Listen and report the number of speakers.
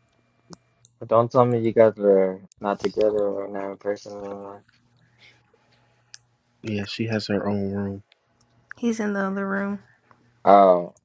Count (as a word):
three